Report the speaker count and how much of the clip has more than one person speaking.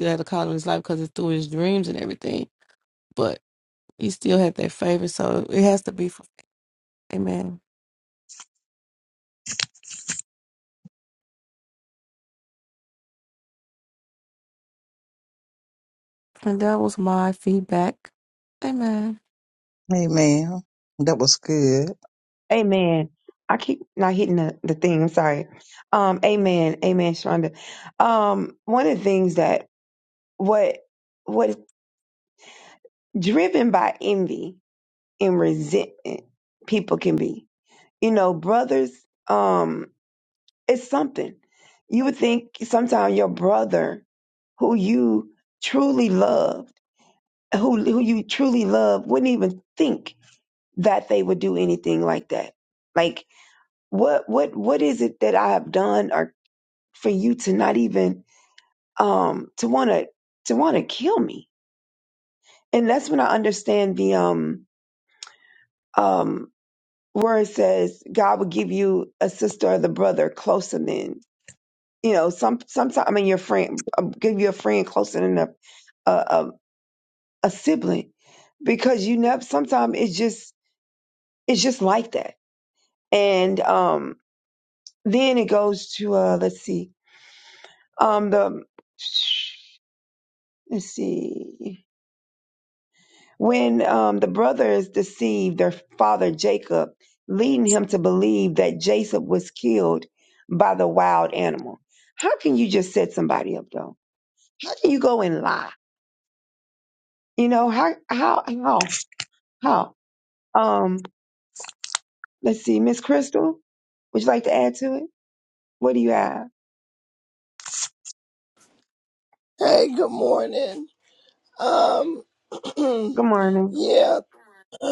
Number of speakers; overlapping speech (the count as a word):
four, no overlap